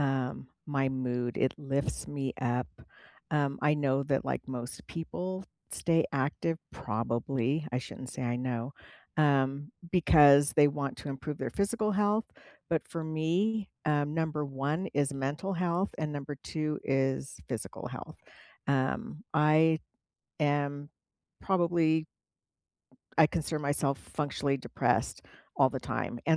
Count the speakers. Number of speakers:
1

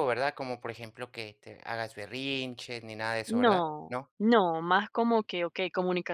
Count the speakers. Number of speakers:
2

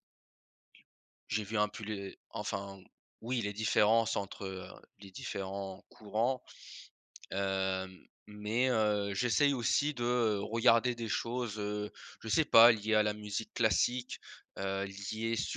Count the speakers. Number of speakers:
1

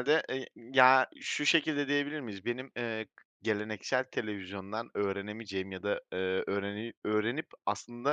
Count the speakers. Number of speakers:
1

